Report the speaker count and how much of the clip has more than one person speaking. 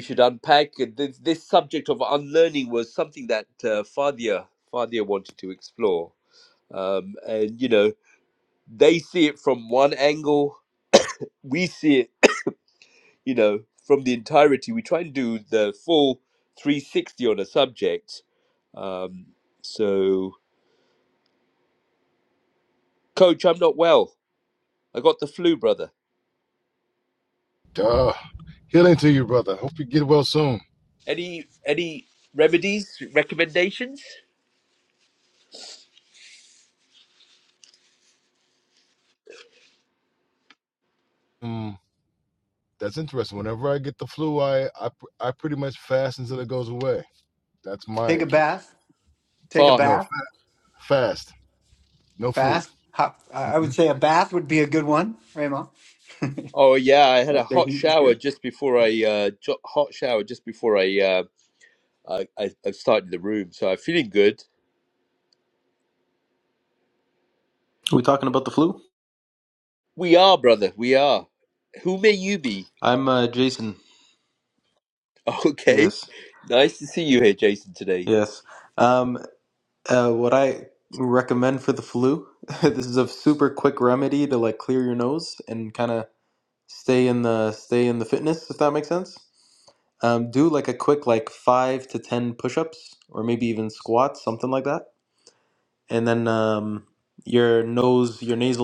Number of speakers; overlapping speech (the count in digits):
4, about 2%